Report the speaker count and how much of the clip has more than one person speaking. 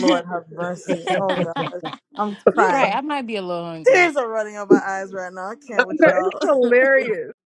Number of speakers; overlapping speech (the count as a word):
three, about 16%